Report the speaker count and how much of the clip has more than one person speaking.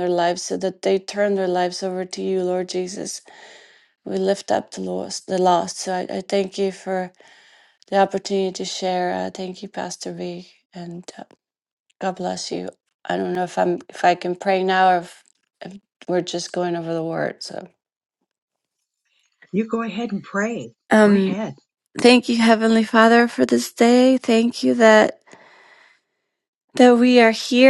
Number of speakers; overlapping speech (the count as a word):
two, about 1%